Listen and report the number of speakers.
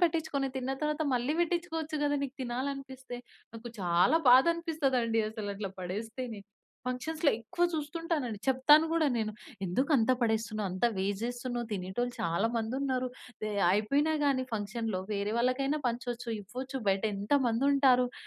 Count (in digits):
1